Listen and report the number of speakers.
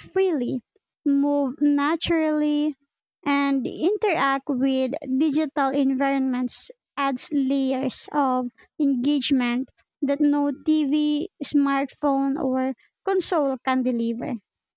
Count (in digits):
1